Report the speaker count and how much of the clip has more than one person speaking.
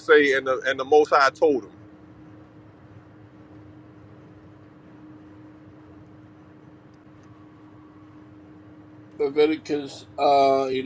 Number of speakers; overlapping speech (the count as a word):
two, no overlap